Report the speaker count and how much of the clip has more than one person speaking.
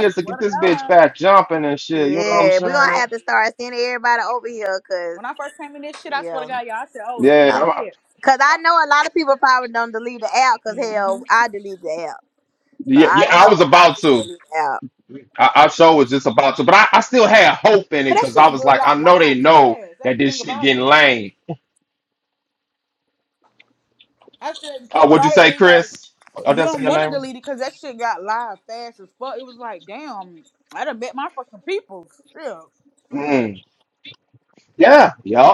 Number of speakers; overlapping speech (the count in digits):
3, about 25%